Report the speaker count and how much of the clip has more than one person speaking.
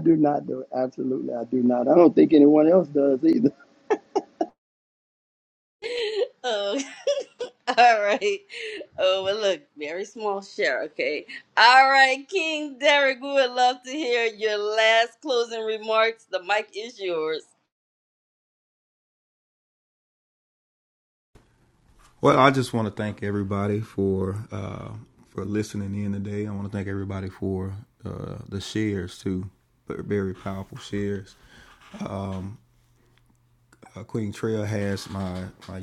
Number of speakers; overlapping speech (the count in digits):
3, no overlap